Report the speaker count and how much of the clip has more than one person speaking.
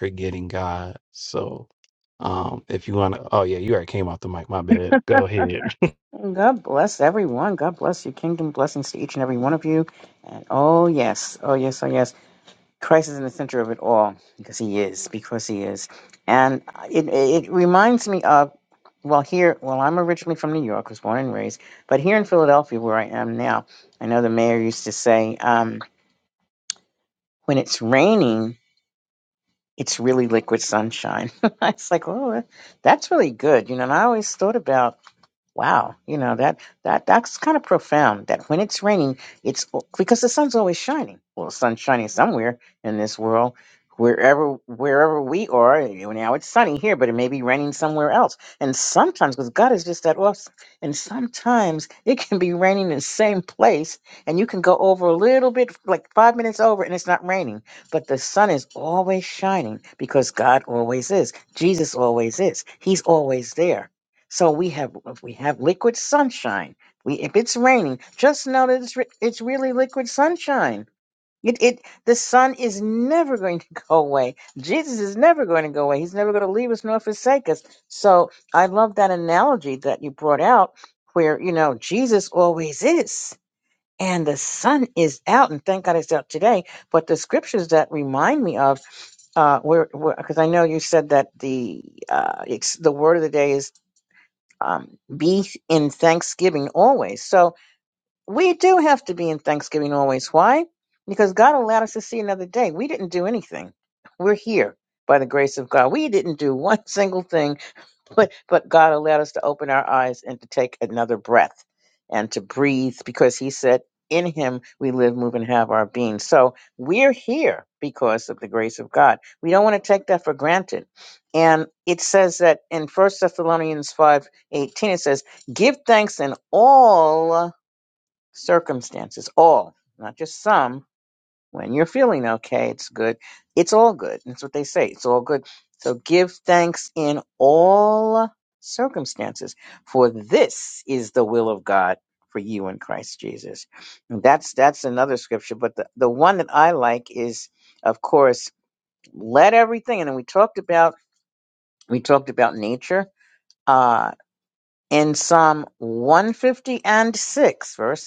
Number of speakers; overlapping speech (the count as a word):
two, no overlap